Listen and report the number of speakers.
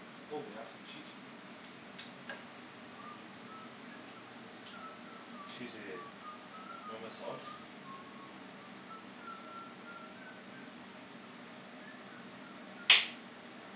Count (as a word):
one